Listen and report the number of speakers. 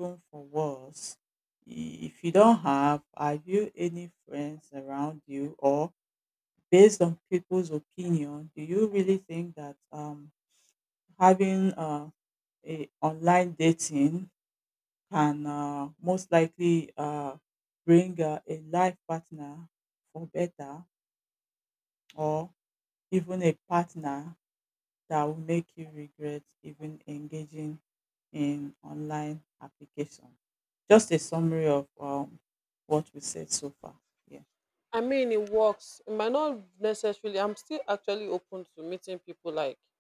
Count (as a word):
two